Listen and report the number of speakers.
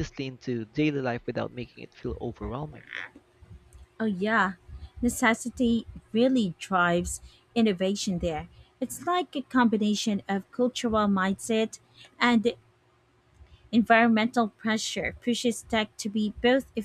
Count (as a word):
two